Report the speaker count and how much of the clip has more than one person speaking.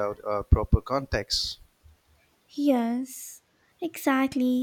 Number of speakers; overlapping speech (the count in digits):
2, no overlap